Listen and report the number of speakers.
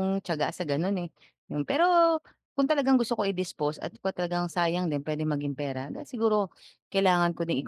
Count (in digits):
1